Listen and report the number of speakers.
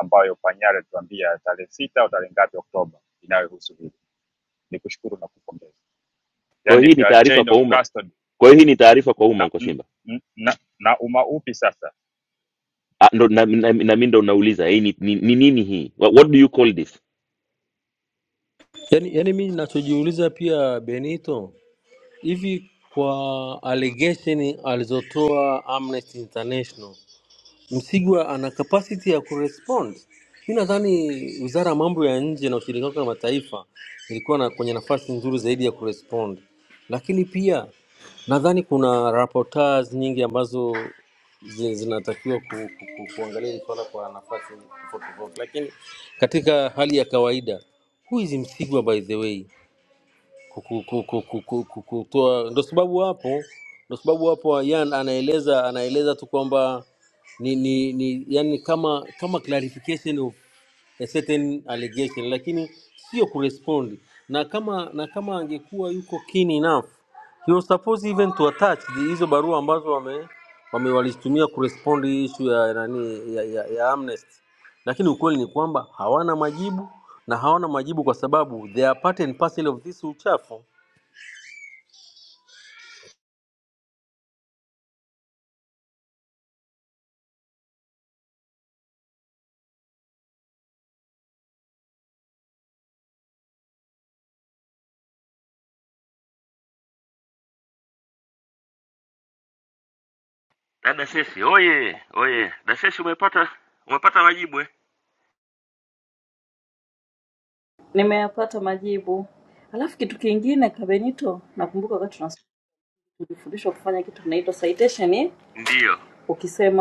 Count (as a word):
four